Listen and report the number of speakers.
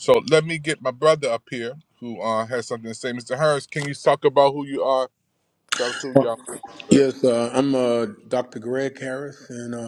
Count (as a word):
two